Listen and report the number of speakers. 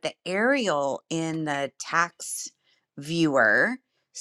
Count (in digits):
1